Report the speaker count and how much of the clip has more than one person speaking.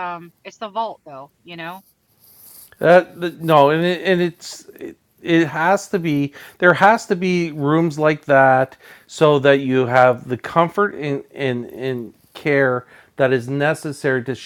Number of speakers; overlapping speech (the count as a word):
two, no overlap